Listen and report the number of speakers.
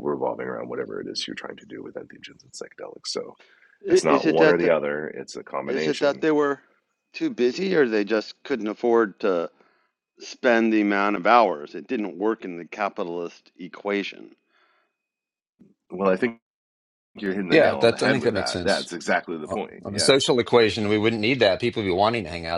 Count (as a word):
three